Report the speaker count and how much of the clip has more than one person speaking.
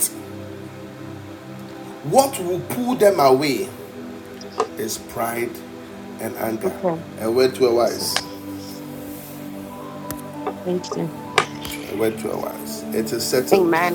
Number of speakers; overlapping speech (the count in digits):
2, about 3%